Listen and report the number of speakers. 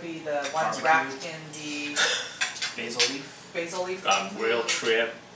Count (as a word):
three